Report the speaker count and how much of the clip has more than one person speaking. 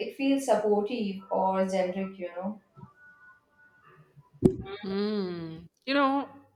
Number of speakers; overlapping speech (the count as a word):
two, no overlap